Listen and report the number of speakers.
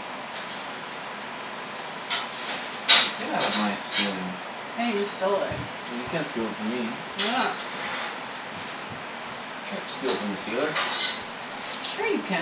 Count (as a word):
two